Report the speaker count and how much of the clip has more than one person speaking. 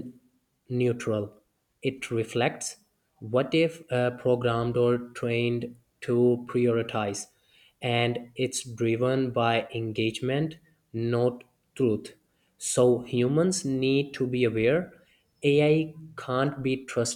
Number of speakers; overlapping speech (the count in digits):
1, no overlap